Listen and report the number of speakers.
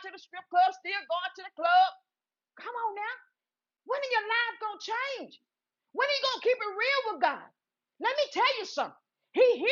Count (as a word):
one